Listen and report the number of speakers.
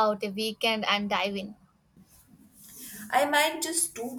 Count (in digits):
2